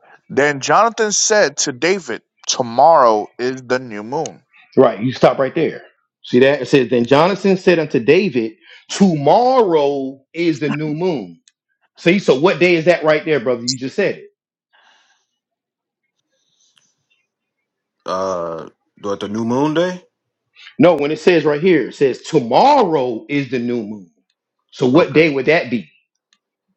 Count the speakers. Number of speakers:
3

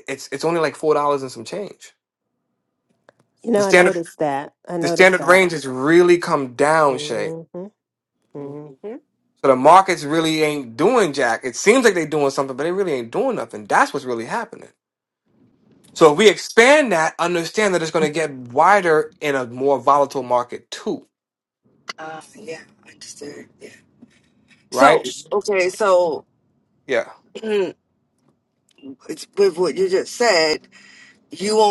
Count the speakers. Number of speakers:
3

